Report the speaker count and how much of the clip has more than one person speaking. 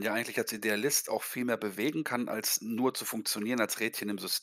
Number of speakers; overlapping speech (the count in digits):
1, no overlap